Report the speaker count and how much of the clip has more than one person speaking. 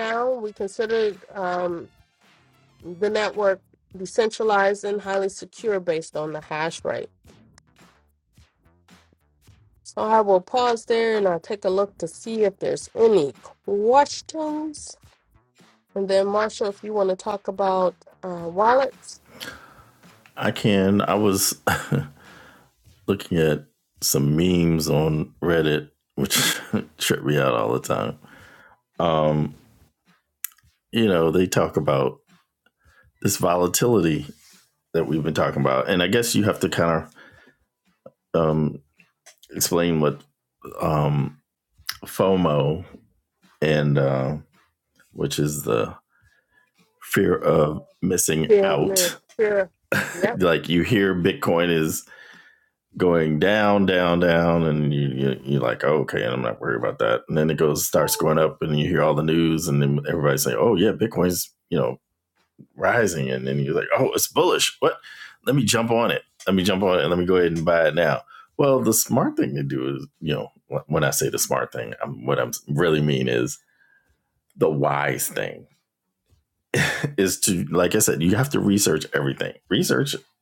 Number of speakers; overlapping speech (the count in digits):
2, about 1%